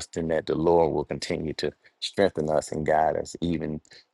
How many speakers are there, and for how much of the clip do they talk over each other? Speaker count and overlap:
1, no overlap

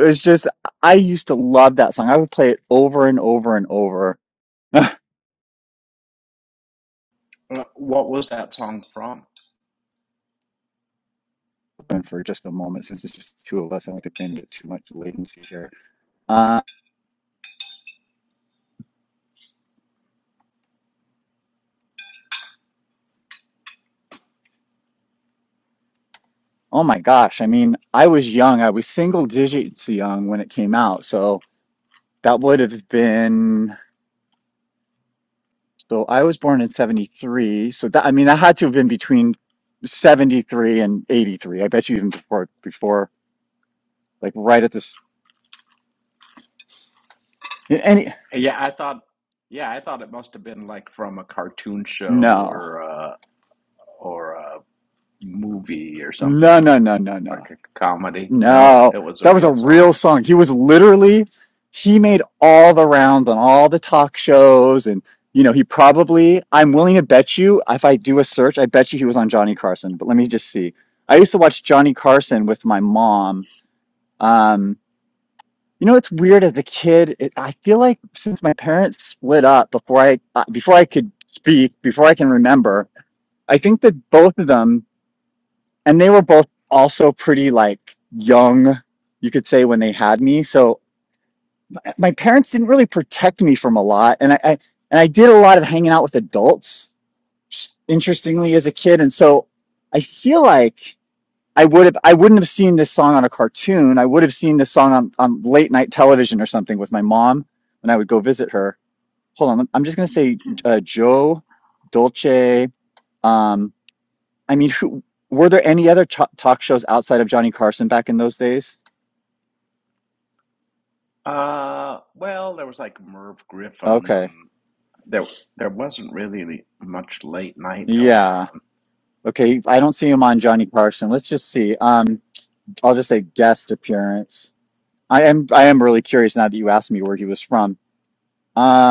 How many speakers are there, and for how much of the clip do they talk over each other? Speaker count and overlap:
2, about 2%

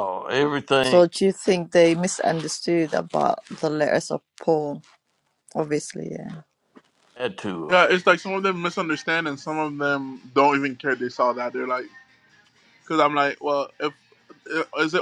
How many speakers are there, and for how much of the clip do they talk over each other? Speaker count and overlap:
3, about 2%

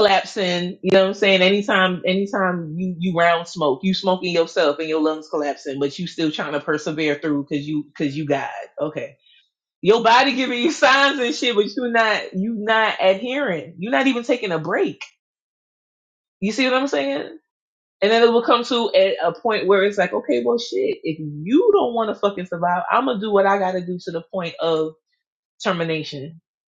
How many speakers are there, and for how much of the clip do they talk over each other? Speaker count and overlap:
1, no overlap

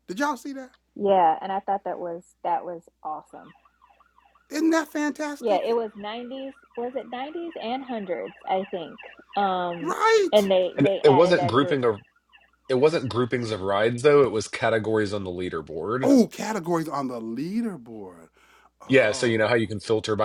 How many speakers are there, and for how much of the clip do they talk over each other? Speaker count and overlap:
3, about 10%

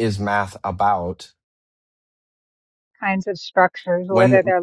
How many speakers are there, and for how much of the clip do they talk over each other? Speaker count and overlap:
2, about 9%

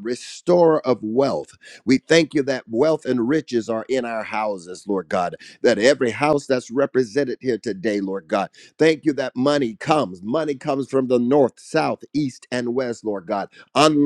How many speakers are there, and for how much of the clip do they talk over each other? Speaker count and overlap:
1, no overlap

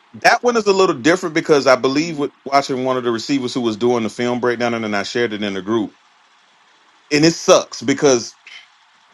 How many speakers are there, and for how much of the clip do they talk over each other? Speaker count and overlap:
1, no overlap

